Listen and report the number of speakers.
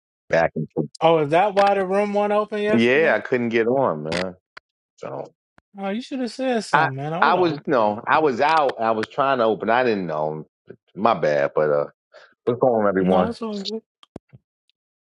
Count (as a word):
two